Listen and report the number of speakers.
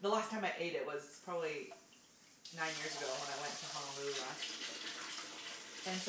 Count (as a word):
one